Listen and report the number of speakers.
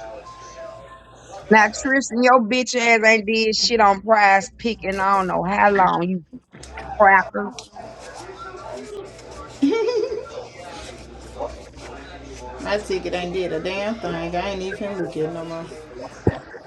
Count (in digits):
2